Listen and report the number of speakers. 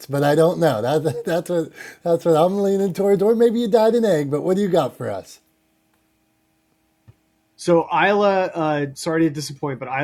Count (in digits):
2